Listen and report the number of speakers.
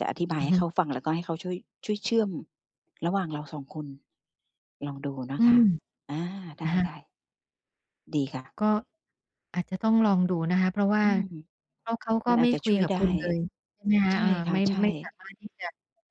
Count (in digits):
2